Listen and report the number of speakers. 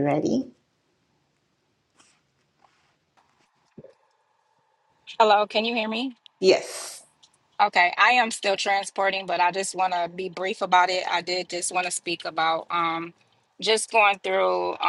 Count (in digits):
2